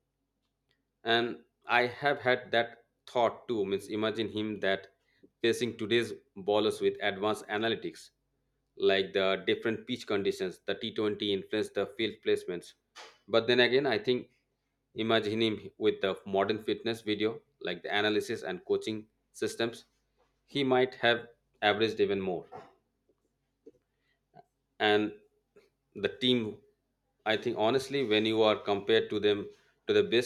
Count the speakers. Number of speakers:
1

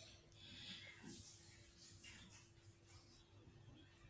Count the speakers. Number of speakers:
0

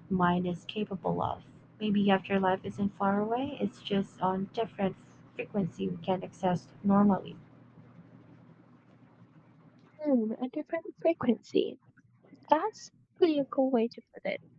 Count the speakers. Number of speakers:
2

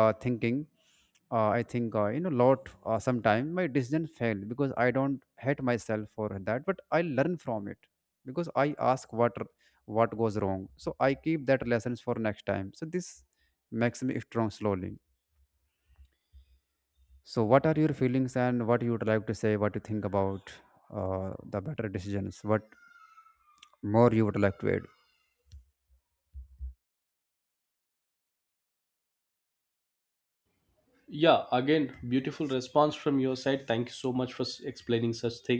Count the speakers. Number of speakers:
2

